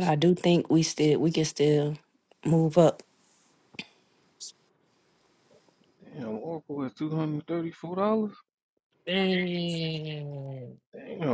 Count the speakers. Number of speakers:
three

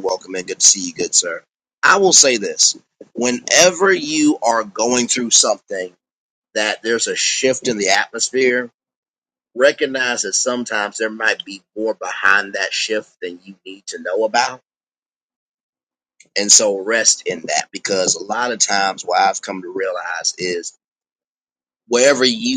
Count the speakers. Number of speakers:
one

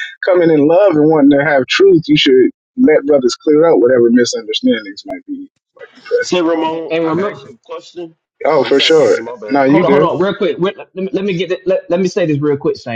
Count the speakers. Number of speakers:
three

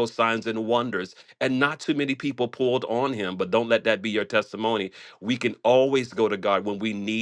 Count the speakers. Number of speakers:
one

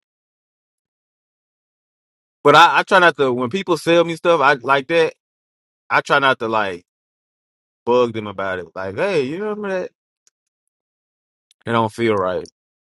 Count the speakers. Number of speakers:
one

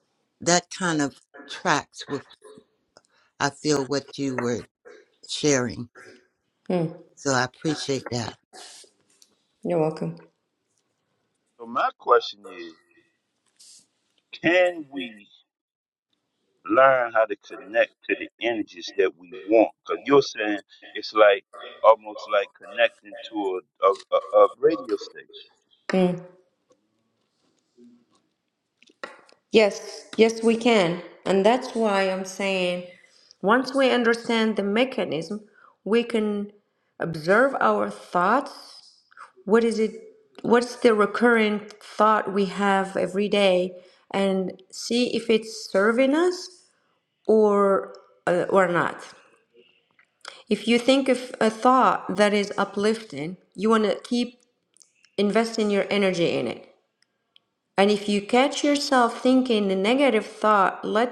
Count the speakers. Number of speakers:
three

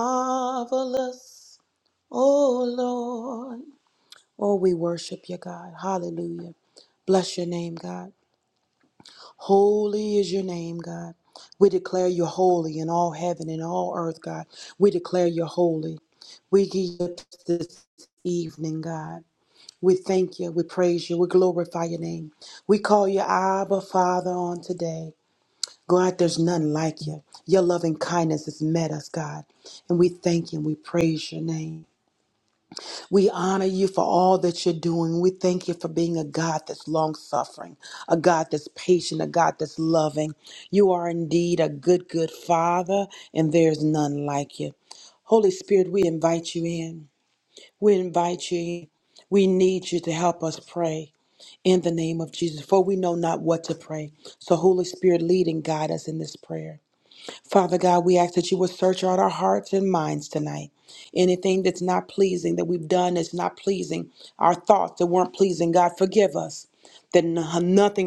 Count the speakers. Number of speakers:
one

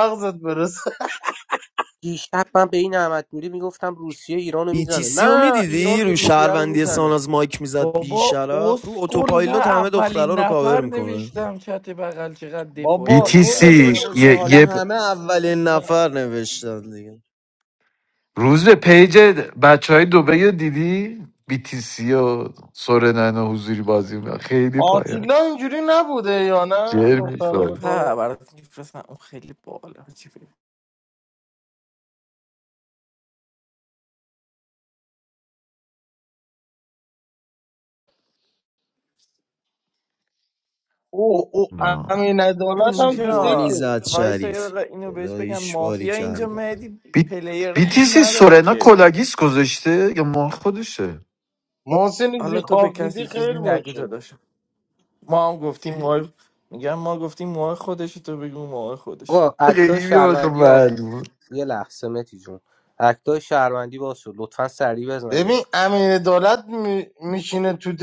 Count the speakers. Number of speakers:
five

